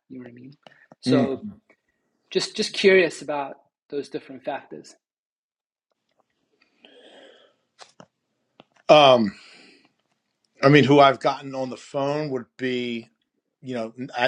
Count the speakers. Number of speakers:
two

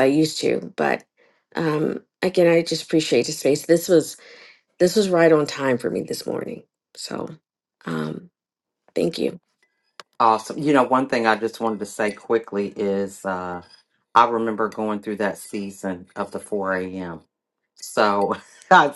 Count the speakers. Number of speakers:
two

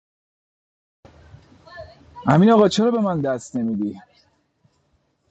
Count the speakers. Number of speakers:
one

